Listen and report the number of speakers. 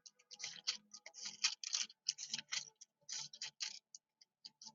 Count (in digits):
0